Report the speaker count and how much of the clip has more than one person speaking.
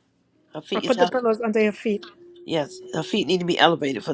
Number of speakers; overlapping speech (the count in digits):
2, about 16%